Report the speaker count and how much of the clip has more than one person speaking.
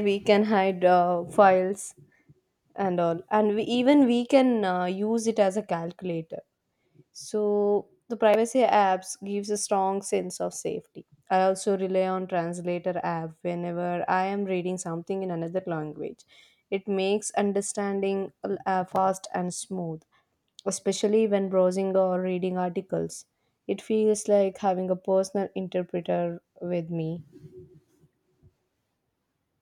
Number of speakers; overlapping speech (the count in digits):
1, no overlap